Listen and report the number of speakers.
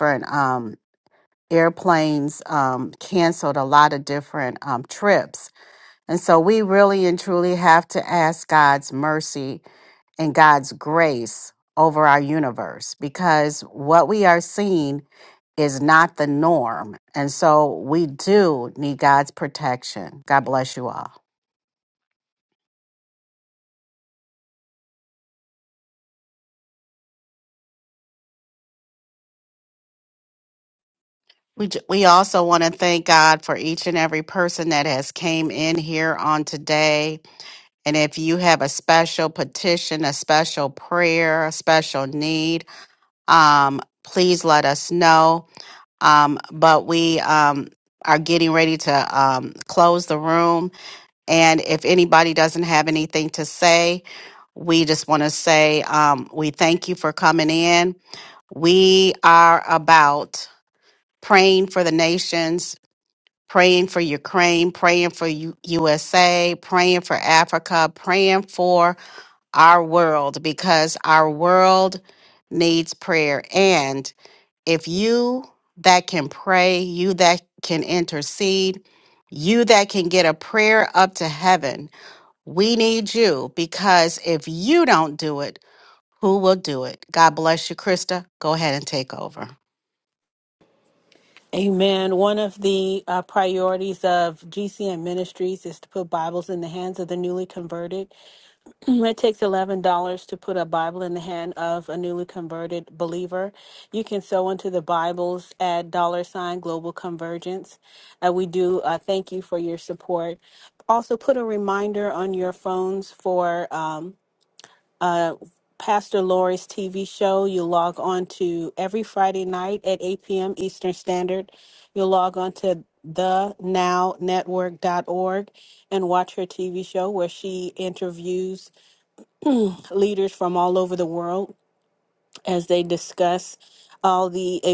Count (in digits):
2